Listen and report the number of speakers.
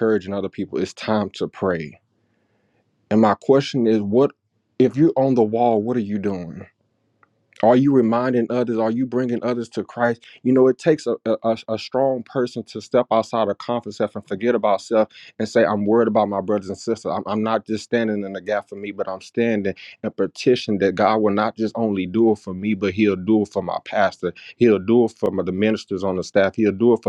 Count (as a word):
one